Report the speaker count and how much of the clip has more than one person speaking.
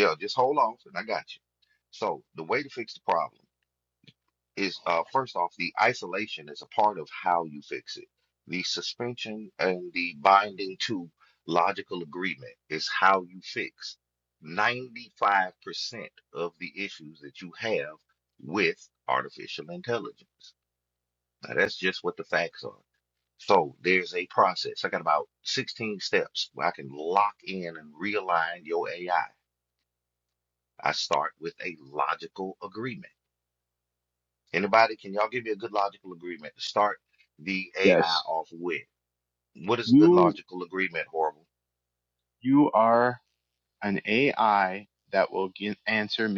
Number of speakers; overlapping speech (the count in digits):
2, about 2%